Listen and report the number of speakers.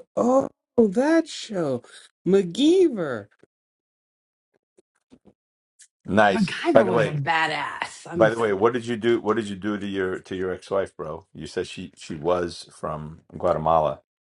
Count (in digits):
3